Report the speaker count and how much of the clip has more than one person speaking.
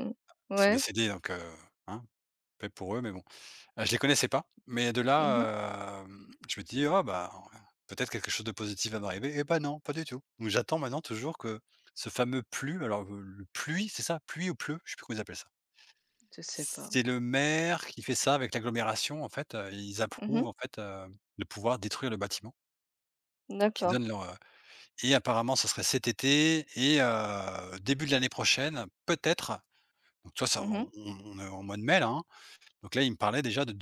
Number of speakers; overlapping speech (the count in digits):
2, about 5%